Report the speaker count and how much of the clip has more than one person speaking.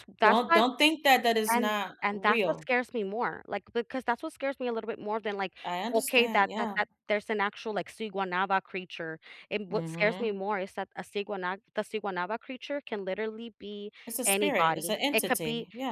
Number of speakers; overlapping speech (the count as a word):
two, about 28%